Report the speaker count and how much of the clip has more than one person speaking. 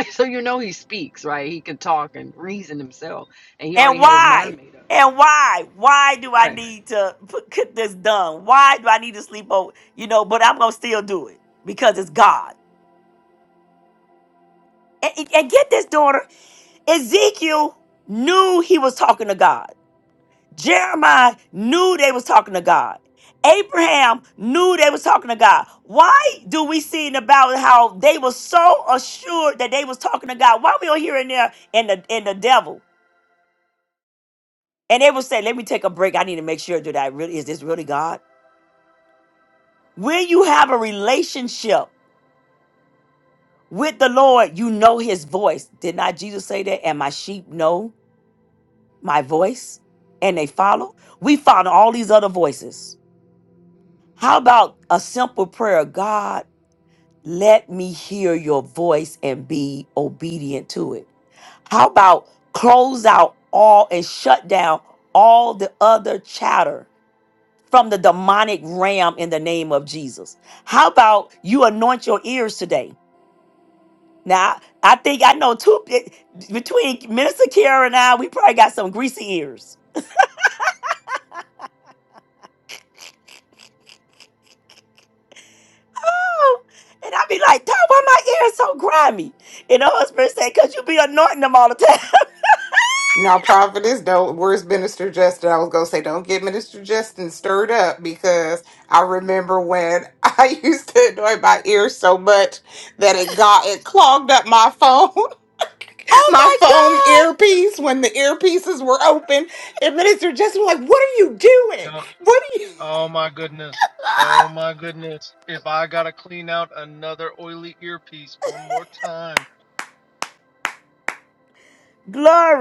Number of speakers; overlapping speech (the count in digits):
4, about 1%